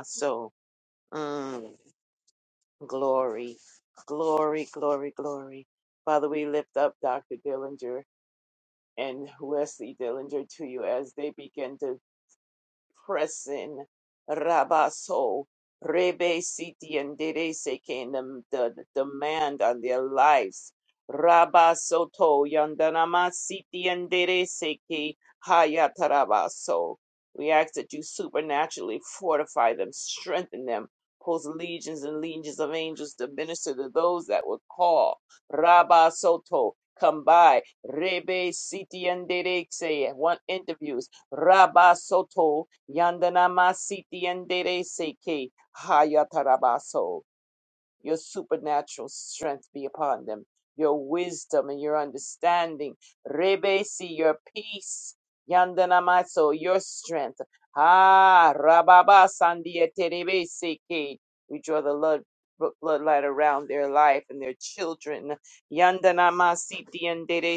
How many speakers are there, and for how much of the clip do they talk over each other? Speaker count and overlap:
1, no overlap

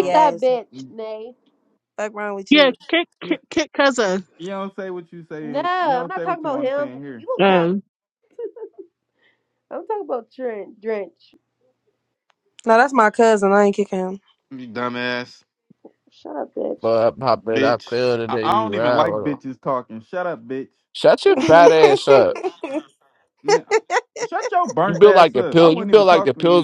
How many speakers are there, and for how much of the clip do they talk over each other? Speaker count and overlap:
5, about 26%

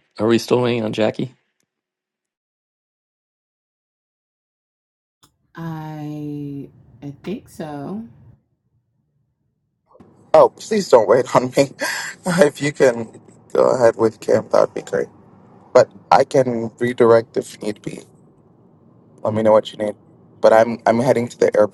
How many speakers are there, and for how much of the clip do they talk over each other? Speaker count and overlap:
3, no overlap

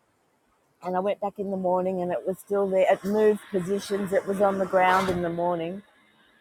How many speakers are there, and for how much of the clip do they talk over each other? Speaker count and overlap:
1, no overlap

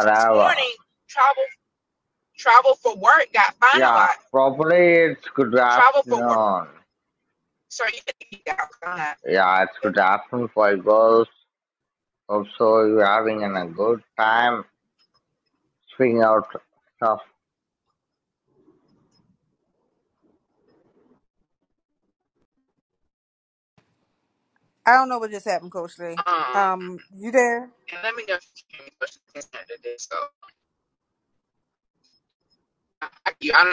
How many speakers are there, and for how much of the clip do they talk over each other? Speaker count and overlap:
3, about 4%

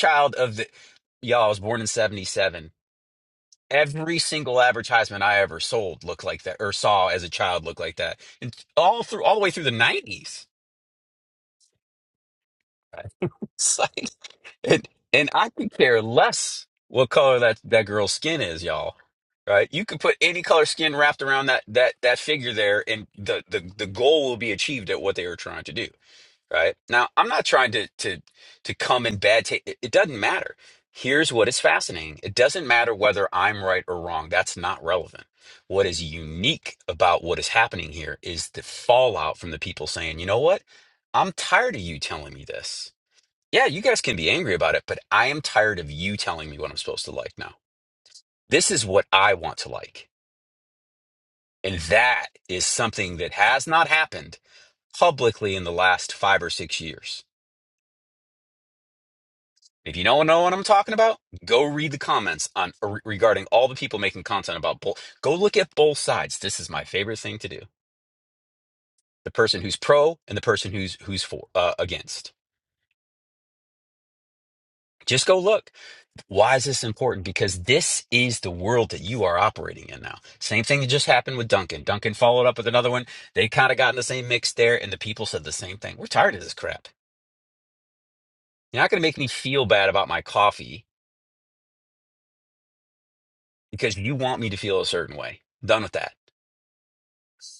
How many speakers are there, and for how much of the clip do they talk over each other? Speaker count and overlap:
1, no overlap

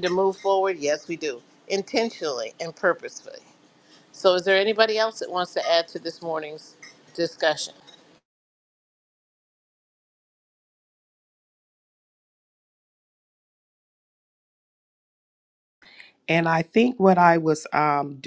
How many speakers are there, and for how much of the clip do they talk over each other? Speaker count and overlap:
2, no overlap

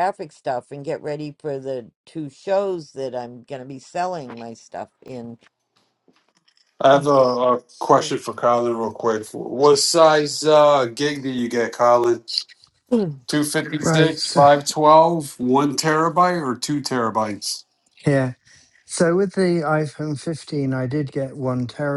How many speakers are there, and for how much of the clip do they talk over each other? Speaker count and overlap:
3, about 3%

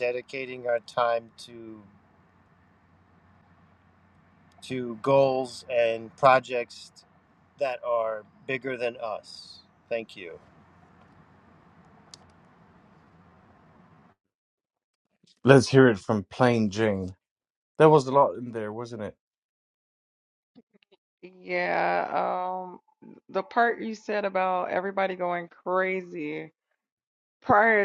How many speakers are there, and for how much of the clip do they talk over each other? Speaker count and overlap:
3, no overlap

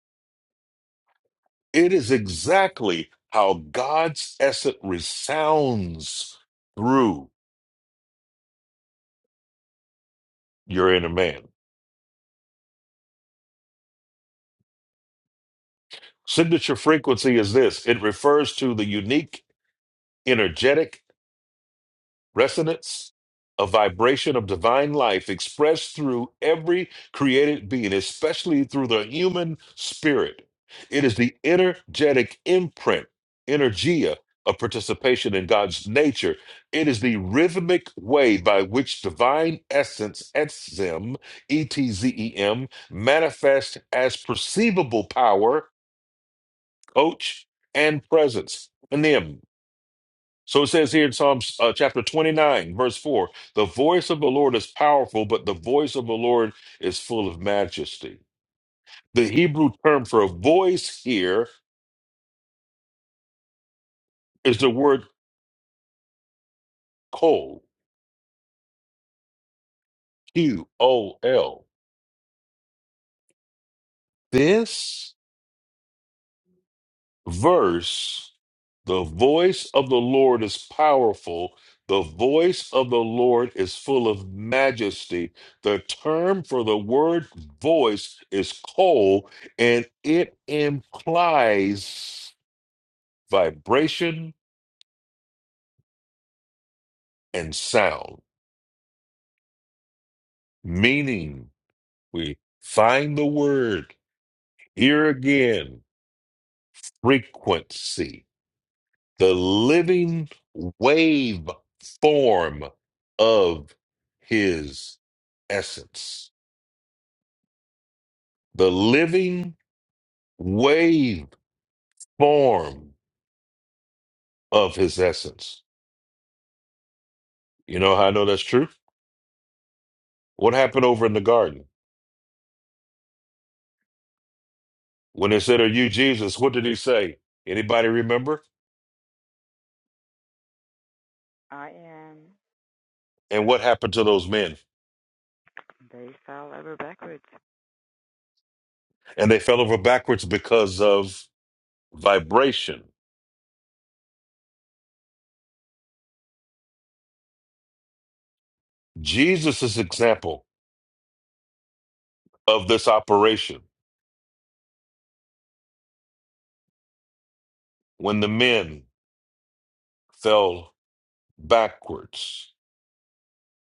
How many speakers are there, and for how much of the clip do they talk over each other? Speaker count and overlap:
2, no overlap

